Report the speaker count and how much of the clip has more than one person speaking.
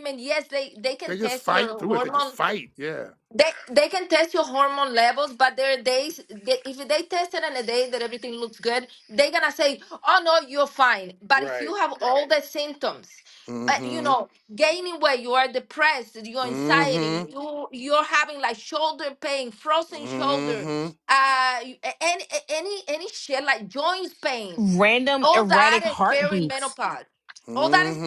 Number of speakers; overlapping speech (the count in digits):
3, about 19%